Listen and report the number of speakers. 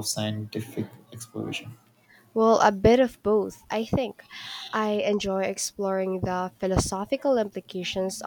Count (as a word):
two